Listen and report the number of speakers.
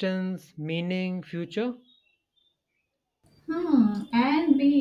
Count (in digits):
2